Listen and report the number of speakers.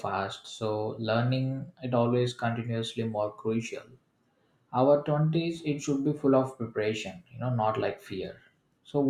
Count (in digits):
1